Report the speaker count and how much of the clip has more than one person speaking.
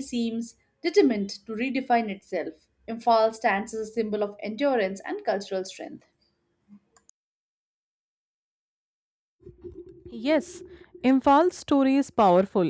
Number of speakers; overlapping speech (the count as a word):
two, no overlap